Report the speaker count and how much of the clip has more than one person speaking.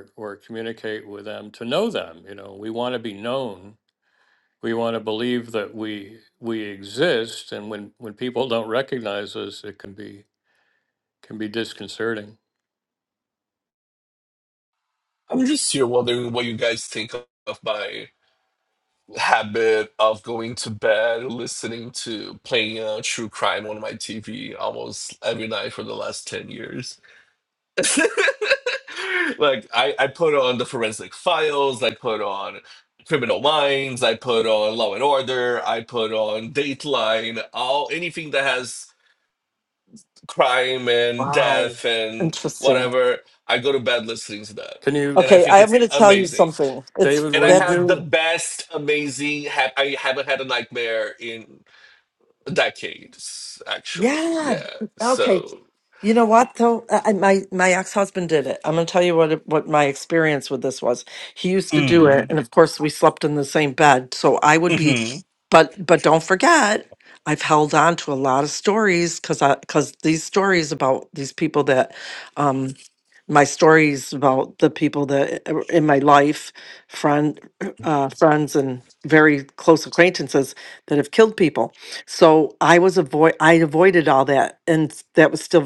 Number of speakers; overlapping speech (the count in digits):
3, about 6%